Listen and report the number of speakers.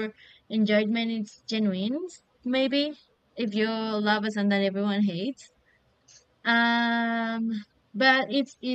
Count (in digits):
1